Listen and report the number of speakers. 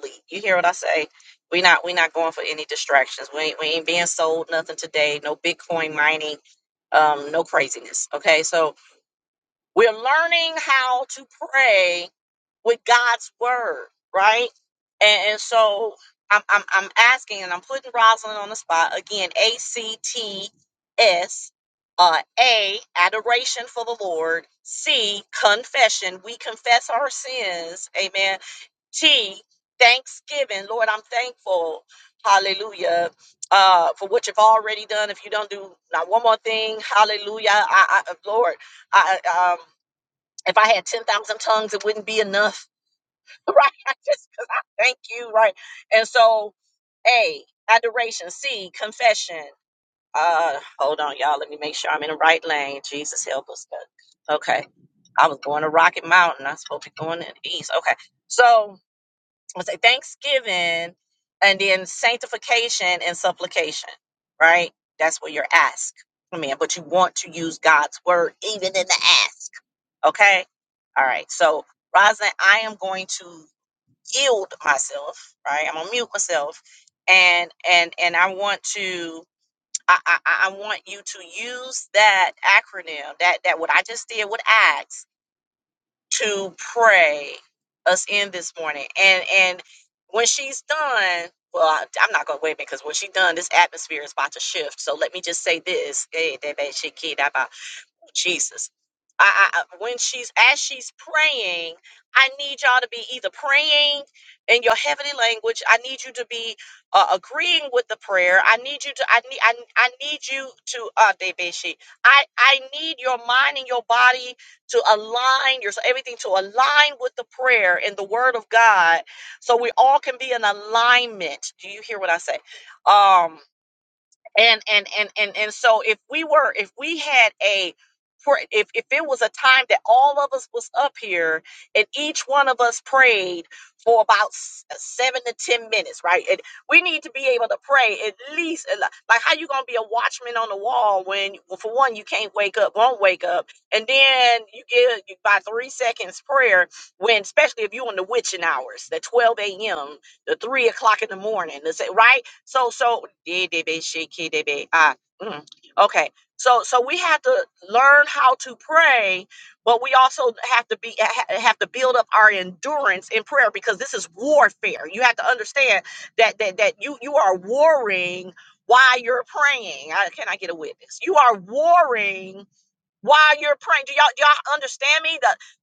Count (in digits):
1